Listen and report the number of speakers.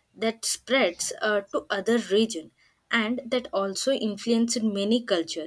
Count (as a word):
one